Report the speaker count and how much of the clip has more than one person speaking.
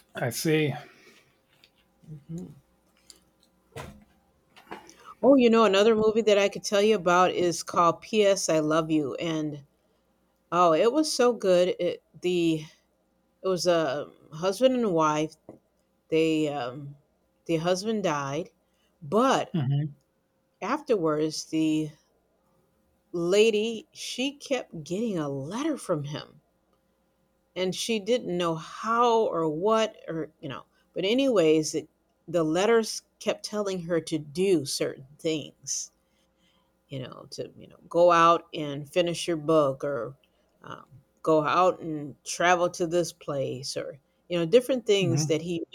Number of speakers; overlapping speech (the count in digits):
2, about 1%